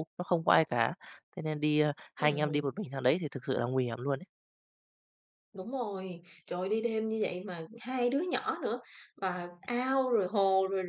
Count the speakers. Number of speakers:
two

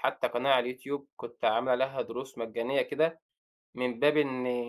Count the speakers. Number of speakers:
one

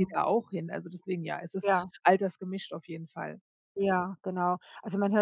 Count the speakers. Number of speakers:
two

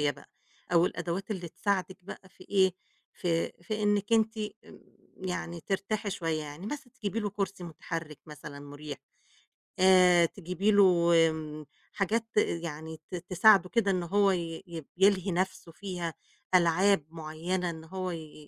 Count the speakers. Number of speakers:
one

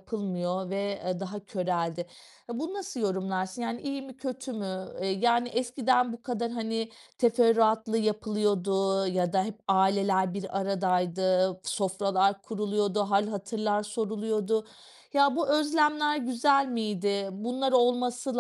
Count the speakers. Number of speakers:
one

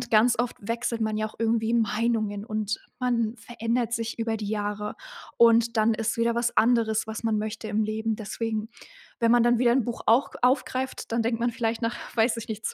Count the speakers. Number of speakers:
one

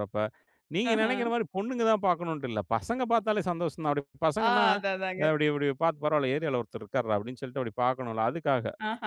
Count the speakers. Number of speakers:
two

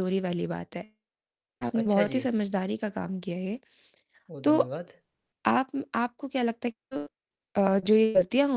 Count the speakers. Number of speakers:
two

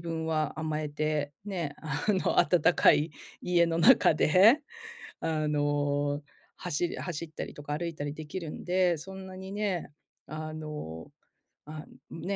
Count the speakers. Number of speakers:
one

